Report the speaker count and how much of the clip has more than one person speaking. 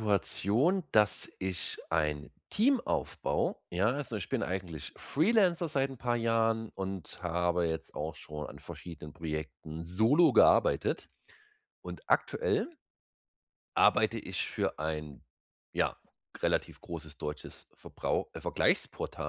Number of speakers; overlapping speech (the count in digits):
1, no overlap